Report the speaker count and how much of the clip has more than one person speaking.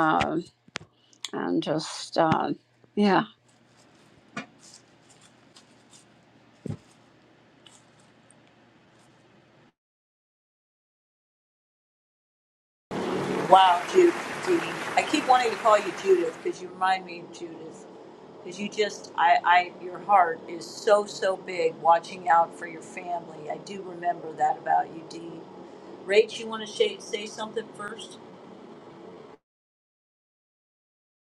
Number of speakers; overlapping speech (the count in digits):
2, no overlap